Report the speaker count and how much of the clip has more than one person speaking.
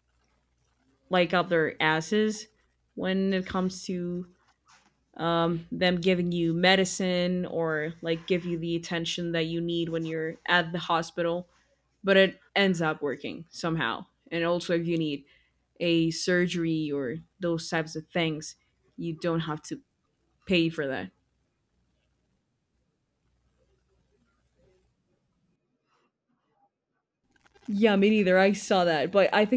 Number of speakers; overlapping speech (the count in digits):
1, no overlap